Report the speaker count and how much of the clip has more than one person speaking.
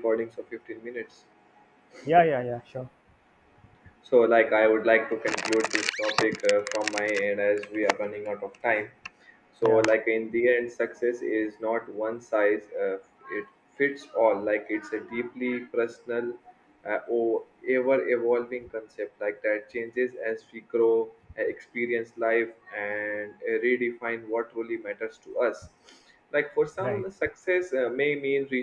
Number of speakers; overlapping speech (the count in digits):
2, about 1%